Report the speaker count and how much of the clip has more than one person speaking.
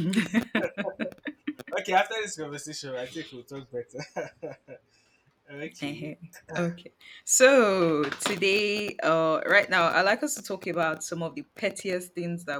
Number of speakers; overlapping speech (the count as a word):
two, no overlap